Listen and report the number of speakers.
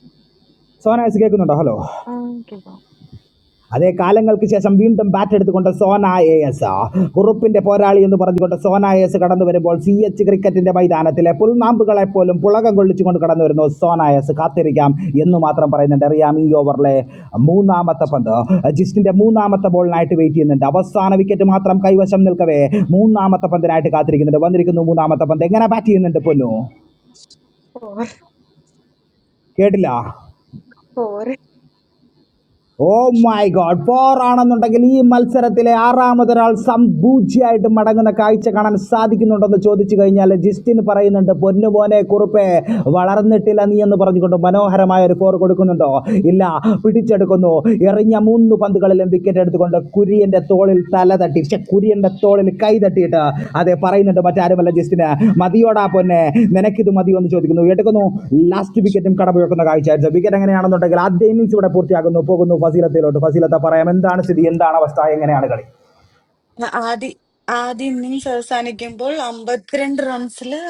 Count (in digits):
3